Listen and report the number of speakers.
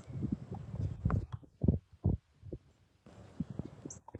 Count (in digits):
0